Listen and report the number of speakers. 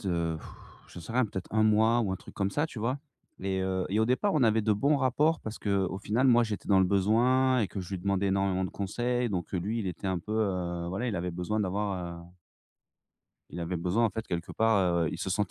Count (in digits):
1